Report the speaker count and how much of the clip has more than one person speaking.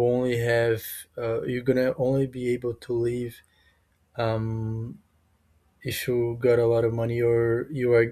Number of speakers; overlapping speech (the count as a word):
one, no overlap